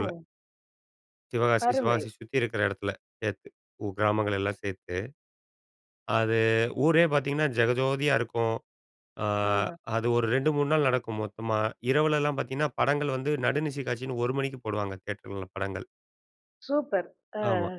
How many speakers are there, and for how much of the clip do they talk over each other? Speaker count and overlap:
two, about 3%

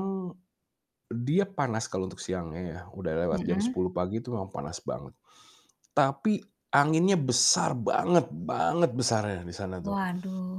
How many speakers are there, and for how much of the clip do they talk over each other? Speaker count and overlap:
two, about 5%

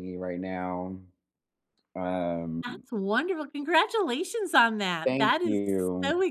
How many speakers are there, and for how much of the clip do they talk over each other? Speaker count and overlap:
two, about 11%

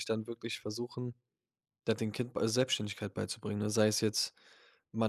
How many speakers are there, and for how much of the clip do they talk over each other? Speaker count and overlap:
one, no overlap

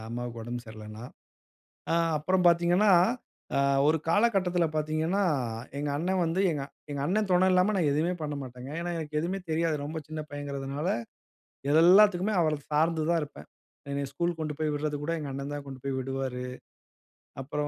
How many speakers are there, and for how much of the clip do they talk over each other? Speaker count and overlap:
one, no overlap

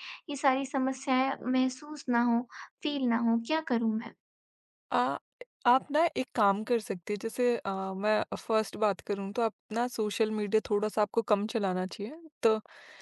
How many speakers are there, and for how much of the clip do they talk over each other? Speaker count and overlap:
two, no overlap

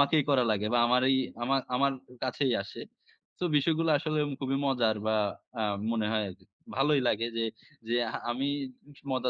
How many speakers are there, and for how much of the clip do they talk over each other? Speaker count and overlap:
one, no overlap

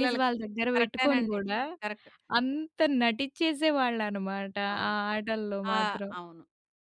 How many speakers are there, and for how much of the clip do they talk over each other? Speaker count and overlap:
two, about 17%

